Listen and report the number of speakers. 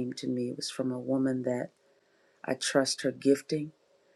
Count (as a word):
one